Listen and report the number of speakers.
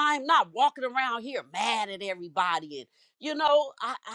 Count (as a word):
one